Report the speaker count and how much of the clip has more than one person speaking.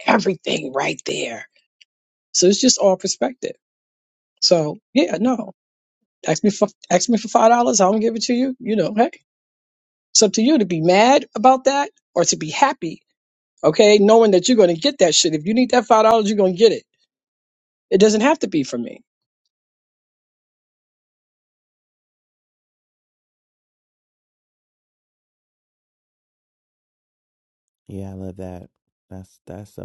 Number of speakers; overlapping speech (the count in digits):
2, no overlap